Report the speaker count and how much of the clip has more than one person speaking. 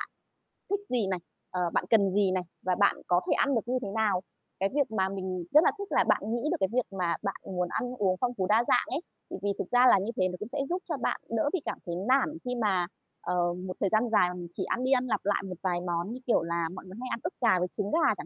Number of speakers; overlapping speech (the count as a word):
one, no overlap